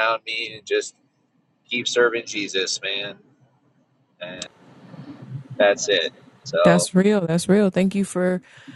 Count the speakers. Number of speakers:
2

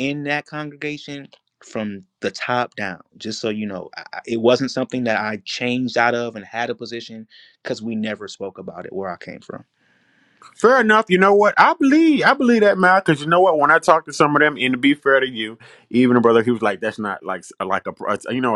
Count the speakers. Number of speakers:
2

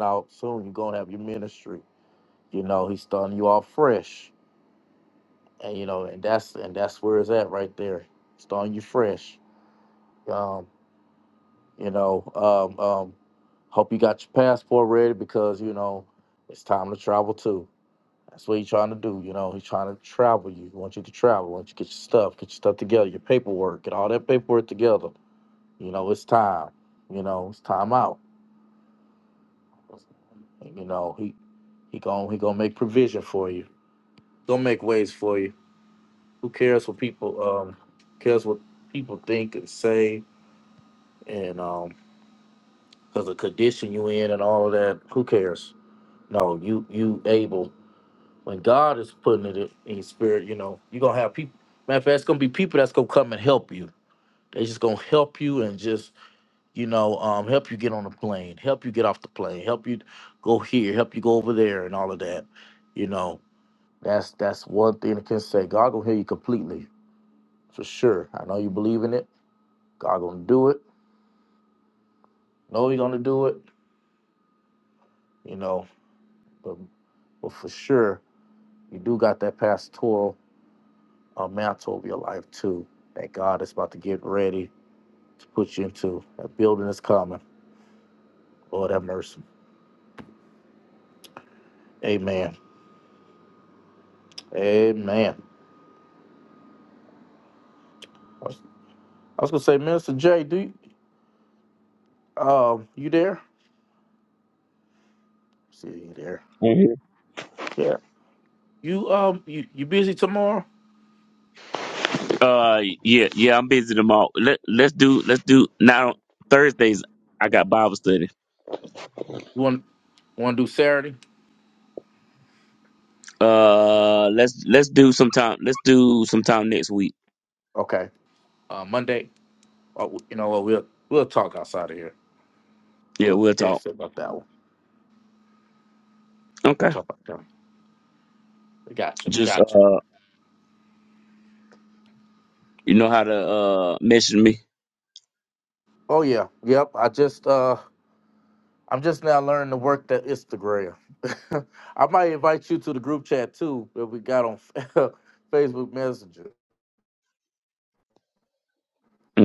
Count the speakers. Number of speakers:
2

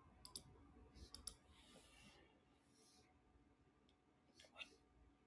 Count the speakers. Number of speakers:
0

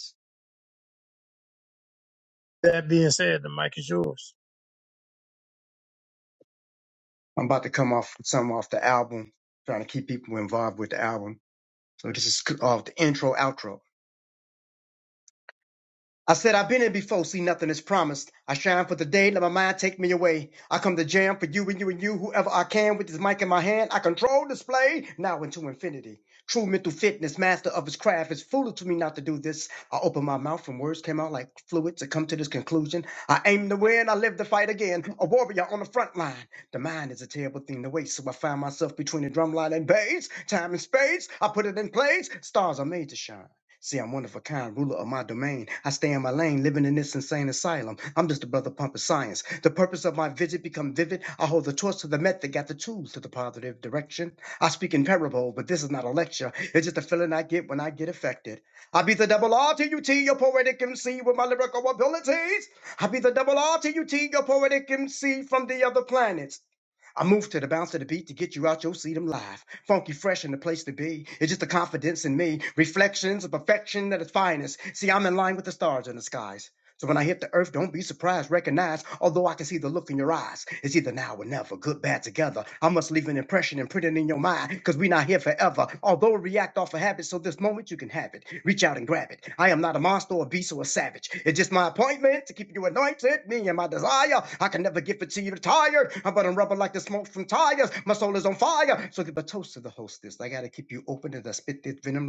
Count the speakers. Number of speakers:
2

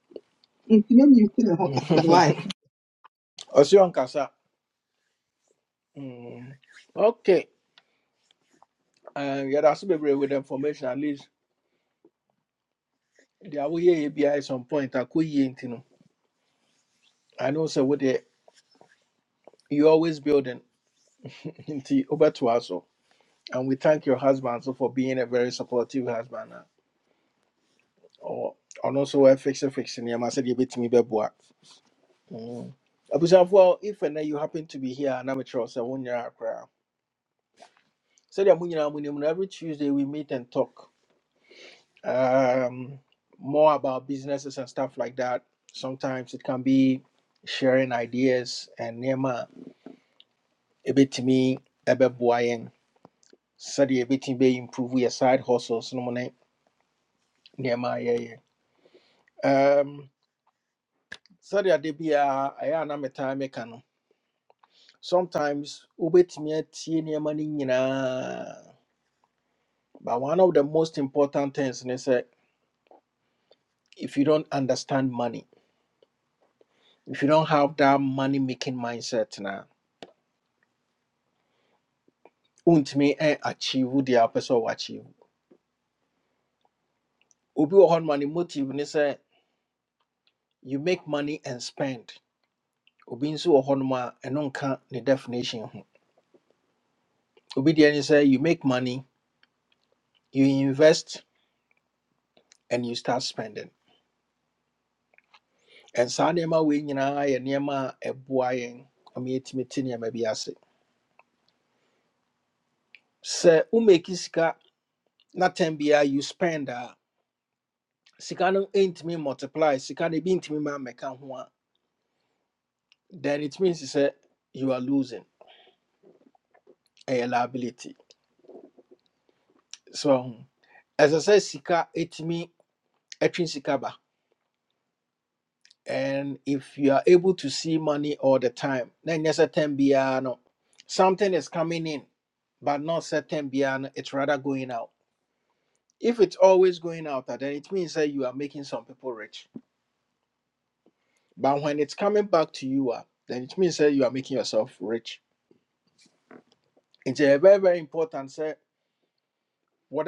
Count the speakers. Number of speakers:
2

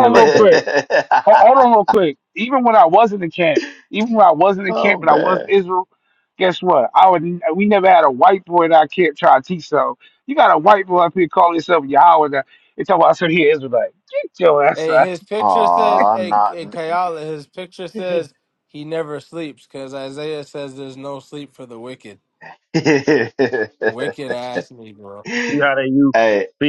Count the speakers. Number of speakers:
4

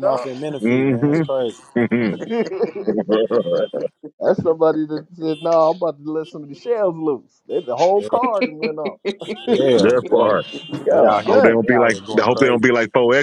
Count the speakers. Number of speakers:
3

